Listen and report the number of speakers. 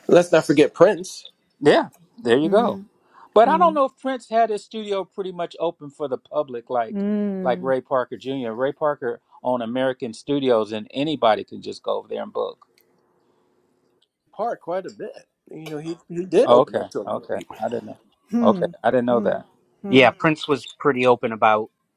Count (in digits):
4